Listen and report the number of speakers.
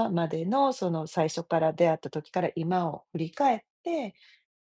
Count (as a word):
one